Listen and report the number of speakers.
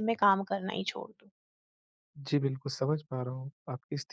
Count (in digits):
2